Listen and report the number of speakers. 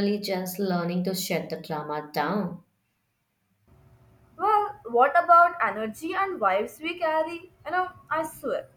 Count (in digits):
2